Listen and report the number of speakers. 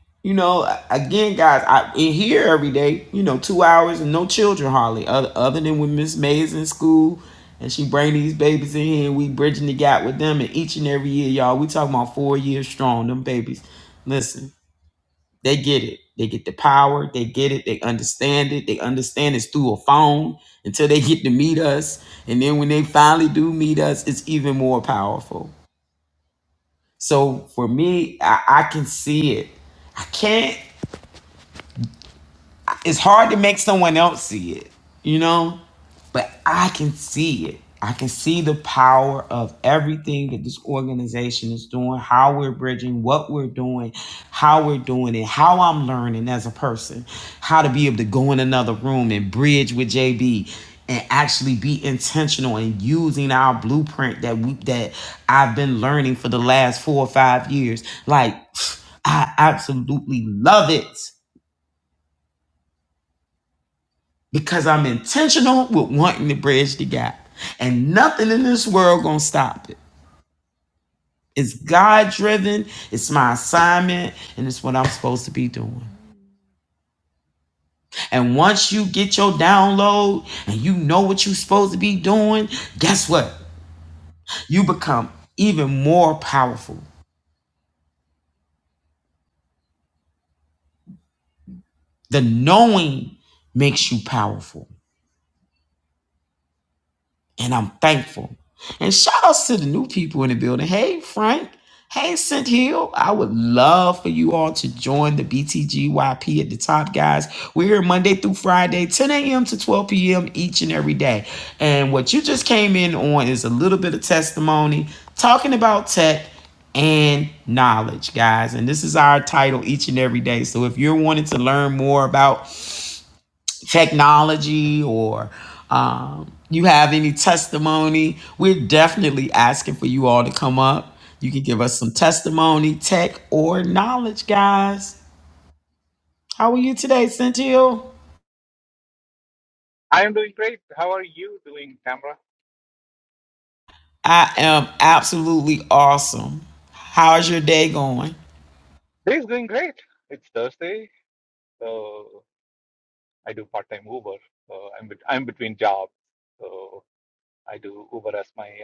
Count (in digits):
2